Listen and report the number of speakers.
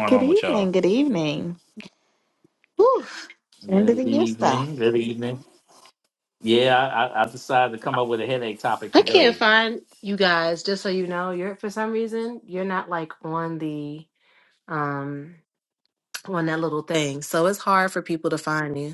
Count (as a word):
three